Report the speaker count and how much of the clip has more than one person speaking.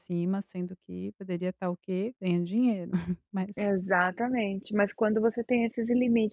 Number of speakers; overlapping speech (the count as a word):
two, no overlap